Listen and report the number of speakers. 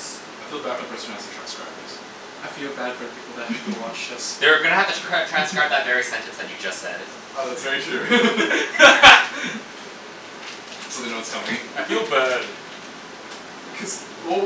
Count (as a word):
three